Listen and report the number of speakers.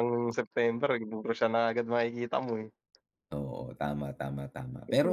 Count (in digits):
2